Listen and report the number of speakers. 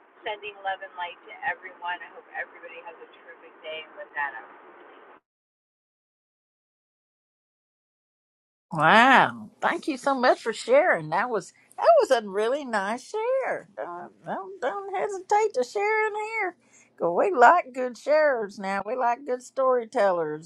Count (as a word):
two